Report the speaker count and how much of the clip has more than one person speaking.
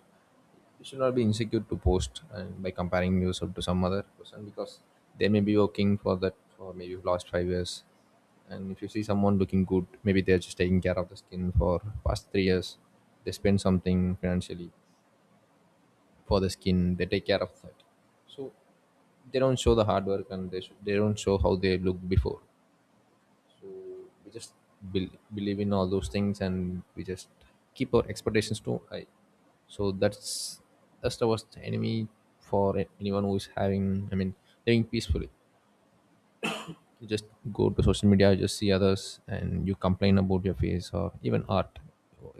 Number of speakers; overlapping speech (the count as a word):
one, no overlap